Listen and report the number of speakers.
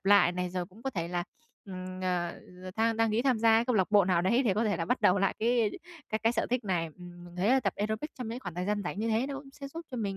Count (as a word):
one